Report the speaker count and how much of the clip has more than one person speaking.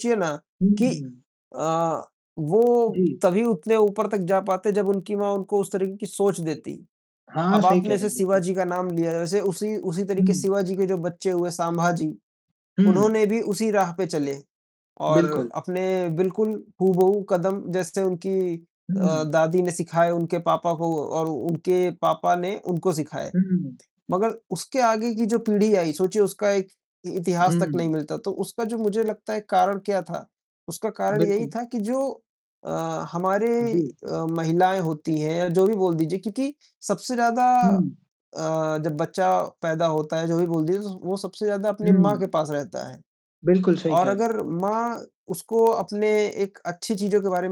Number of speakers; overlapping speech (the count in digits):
2, about 10%